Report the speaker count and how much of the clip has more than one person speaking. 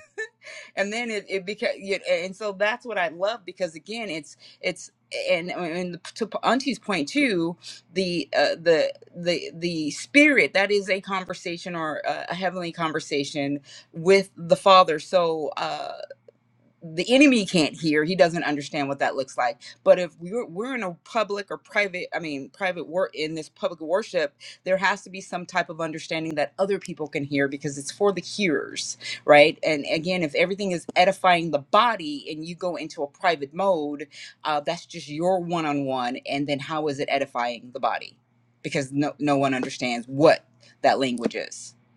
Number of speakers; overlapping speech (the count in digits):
1, no overlap